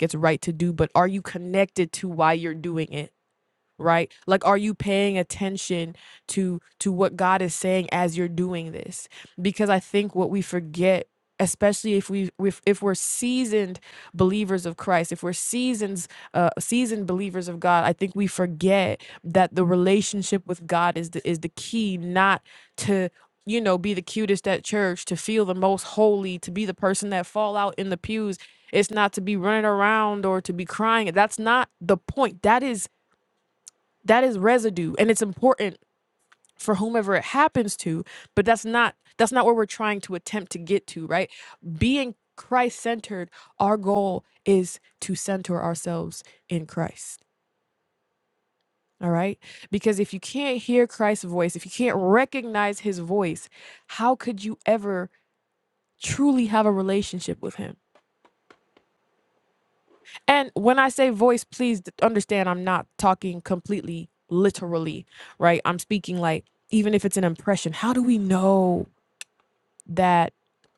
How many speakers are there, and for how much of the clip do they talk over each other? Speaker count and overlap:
1, no overlap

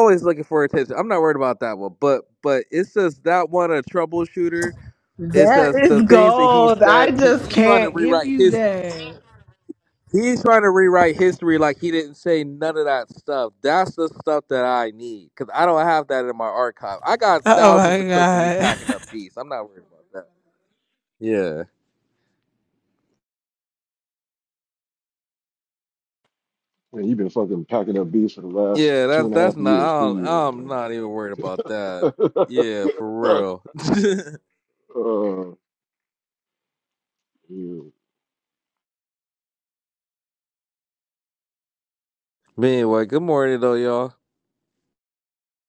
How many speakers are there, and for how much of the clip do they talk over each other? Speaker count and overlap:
3, about 14%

